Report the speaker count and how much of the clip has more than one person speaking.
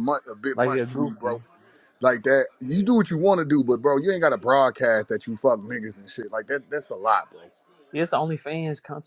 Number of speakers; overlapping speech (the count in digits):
2, about 9%